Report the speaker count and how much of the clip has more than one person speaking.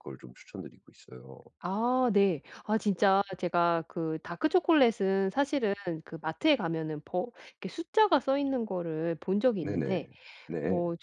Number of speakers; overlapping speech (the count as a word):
two, about 5%